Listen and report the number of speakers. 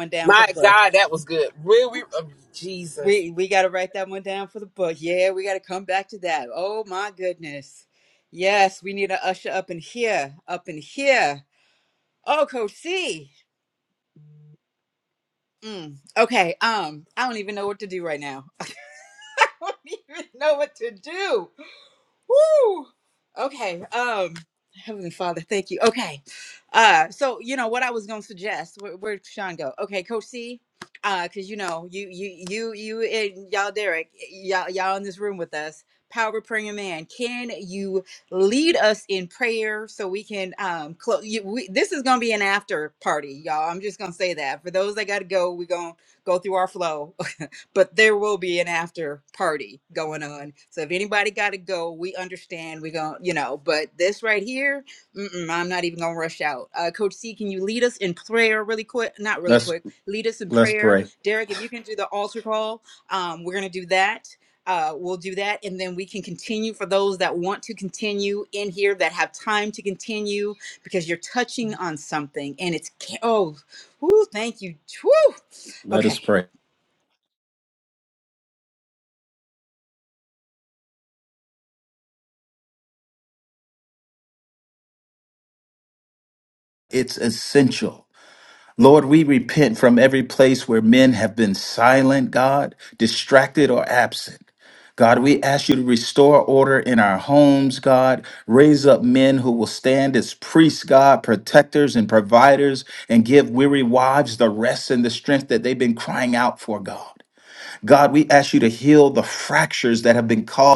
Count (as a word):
three